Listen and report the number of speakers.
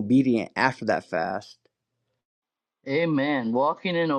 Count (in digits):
2